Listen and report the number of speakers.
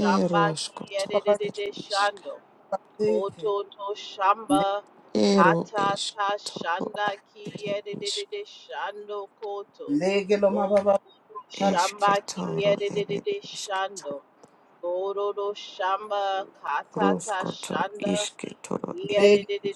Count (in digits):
3